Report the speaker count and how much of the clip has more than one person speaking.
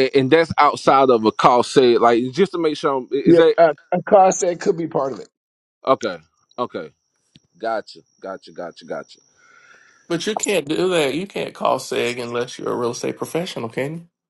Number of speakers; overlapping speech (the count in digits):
3, about 2%